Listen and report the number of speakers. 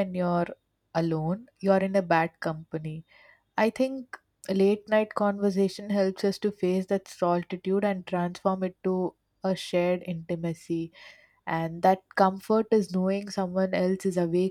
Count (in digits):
1